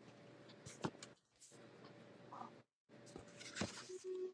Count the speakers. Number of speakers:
zero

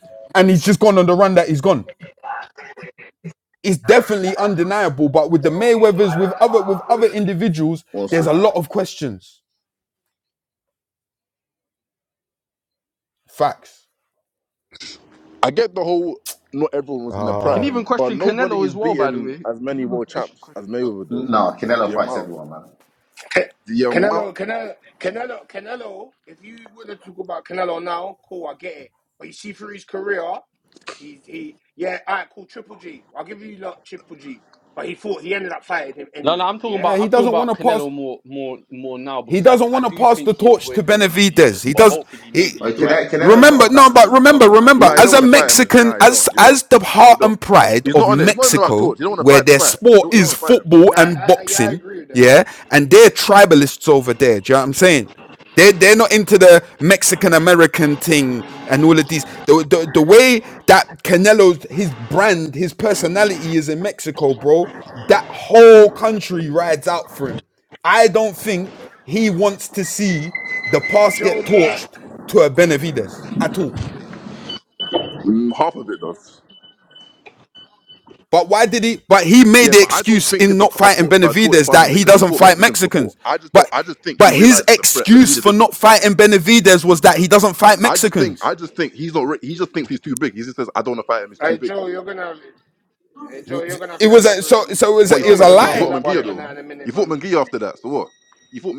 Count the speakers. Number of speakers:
five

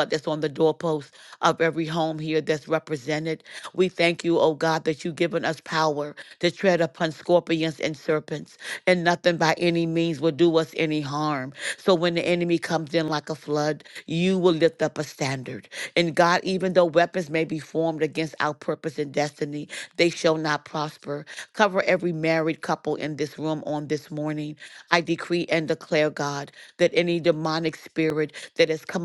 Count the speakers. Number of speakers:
one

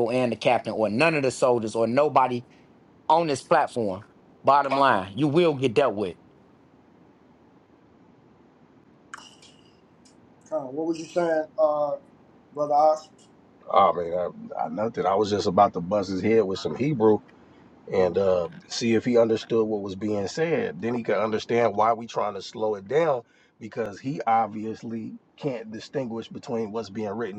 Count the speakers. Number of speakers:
three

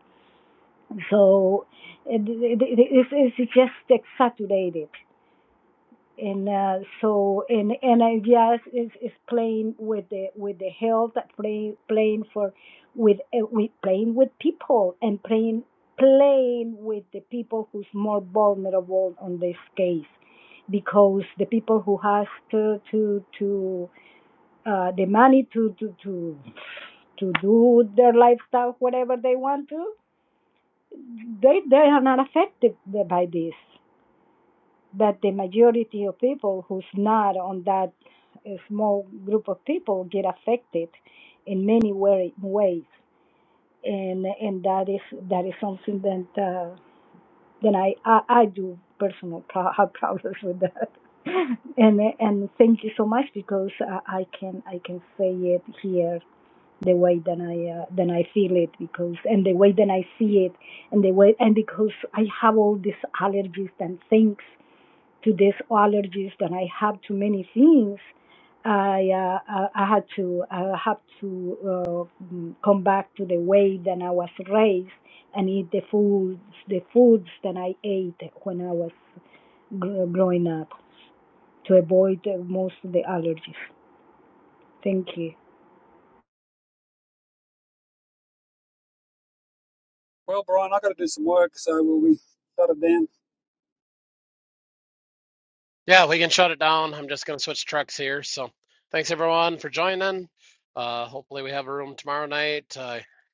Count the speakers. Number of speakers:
three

